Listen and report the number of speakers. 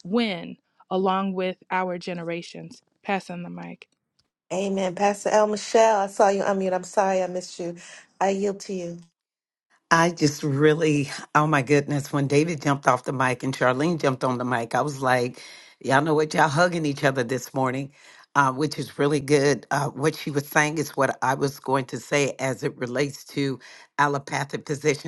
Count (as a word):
three